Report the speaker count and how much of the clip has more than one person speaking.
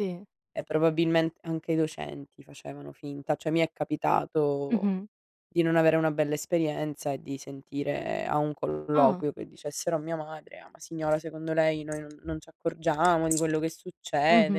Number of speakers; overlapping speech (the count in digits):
2, about 4%